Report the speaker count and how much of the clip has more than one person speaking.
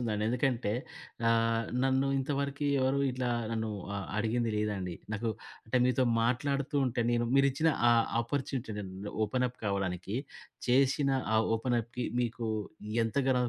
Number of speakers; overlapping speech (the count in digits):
1, no overlap